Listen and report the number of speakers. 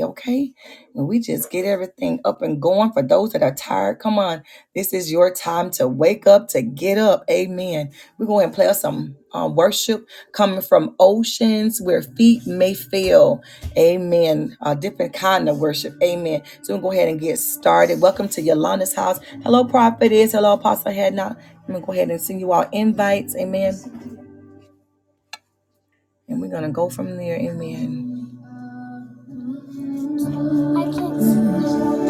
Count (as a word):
one